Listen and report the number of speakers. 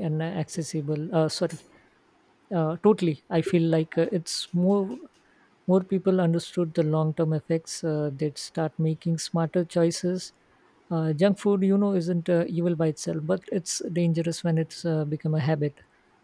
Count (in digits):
1